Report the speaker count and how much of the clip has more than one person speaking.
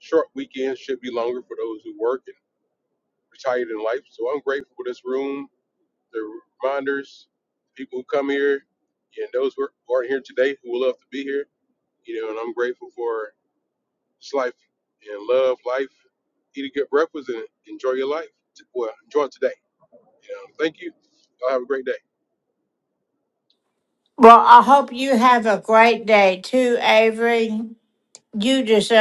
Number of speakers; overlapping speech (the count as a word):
two, no overlap